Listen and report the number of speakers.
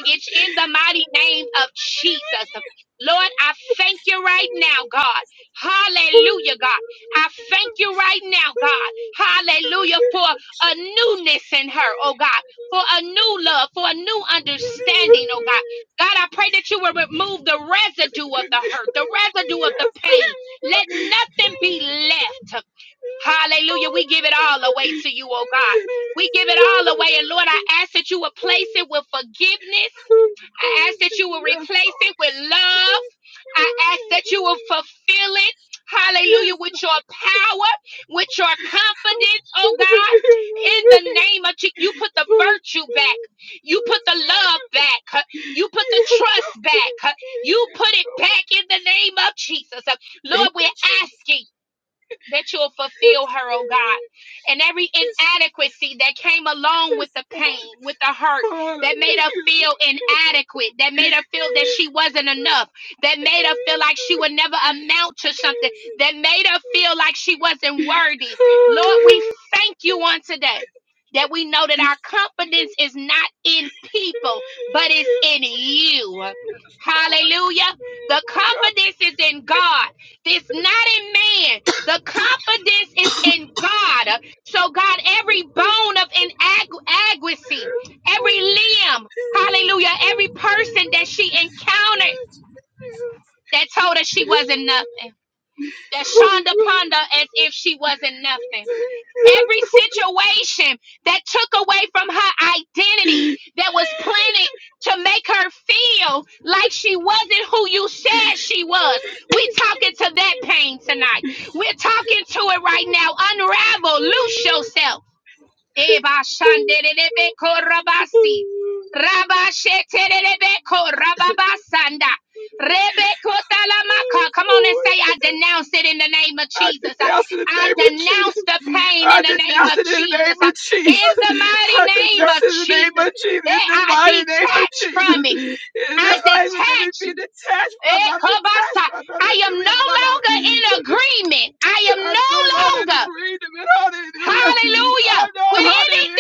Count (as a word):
two